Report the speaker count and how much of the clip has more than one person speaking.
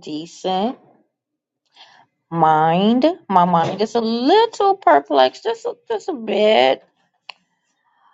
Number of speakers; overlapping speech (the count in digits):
1, no overlap